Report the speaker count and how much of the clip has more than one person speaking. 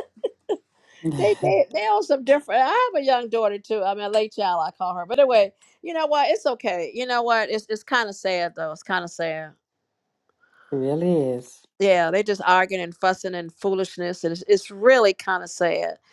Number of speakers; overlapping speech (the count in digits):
2, about 2%